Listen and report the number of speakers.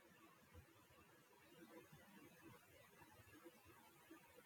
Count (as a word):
zero